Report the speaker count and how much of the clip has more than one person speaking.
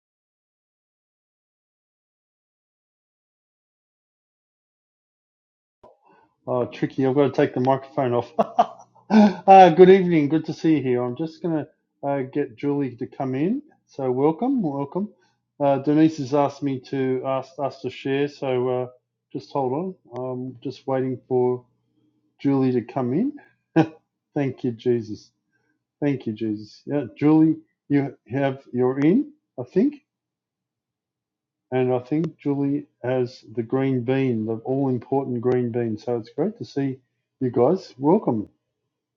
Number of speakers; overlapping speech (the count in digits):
1, no overlap